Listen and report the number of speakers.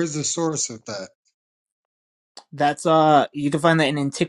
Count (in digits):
2